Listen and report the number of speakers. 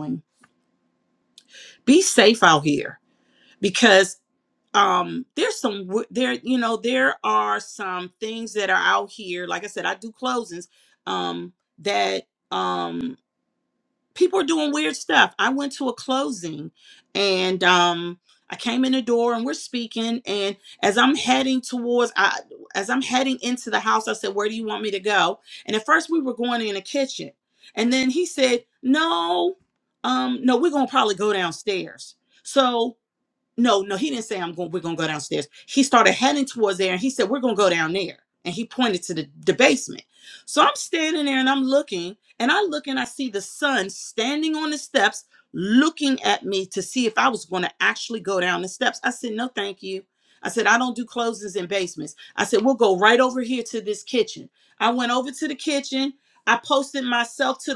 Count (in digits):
1